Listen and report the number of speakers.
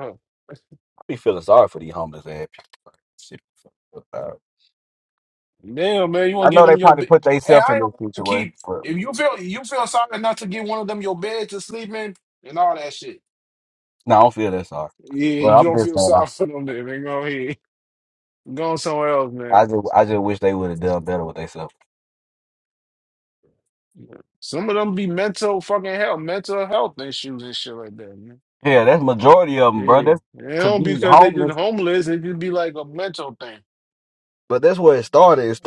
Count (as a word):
two